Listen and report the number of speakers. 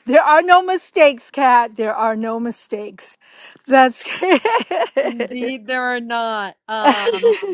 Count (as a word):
two